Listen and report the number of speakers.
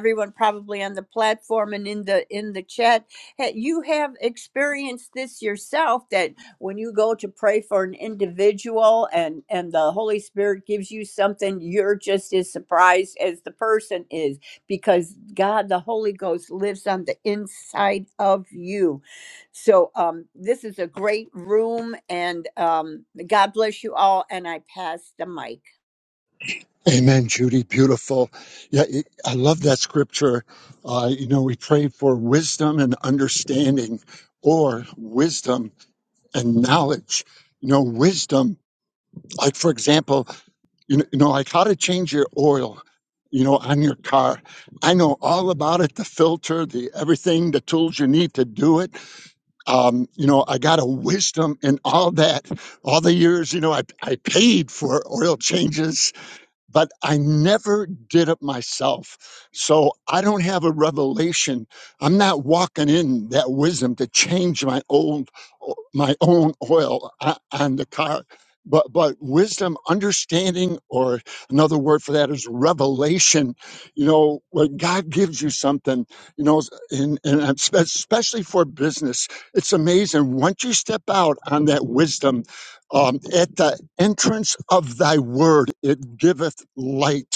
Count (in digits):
2